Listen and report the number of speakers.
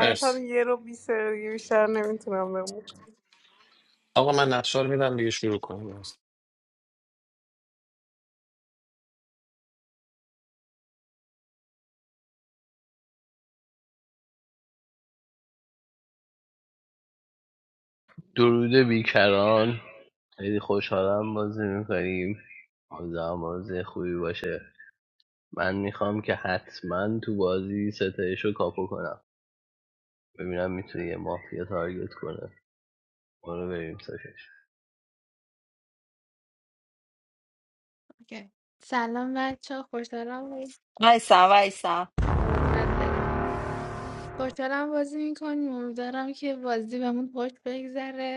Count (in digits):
5